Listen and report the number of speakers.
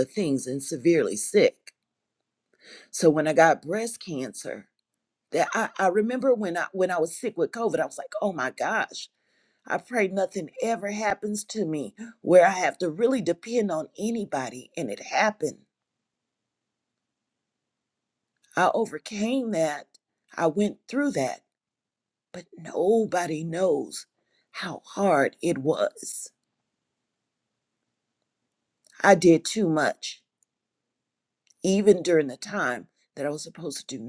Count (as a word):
one